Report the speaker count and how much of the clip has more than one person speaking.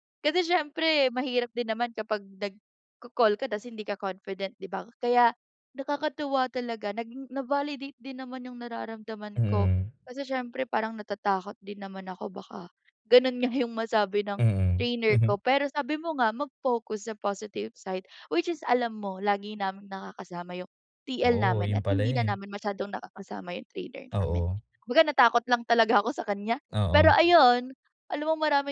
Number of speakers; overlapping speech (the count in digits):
2, about 7%